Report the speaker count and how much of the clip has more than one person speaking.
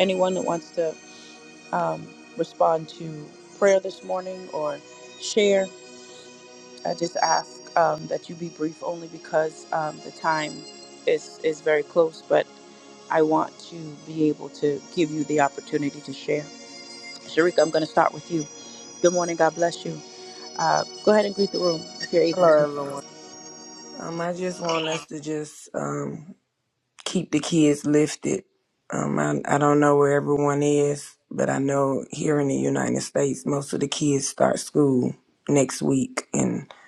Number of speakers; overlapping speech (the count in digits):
2, about 1%